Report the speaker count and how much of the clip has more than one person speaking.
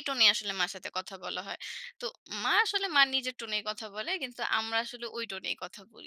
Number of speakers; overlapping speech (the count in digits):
1, no overlap